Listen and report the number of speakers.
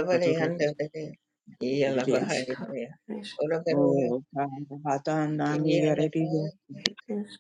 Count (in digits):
3